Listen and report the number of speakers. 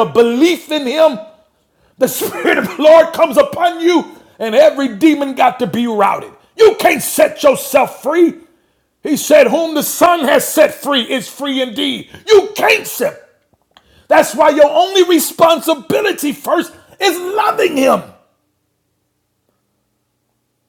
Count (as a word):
one